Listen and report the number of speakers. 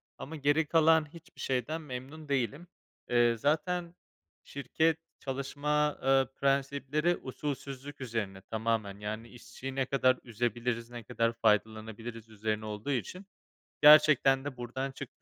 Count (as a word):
one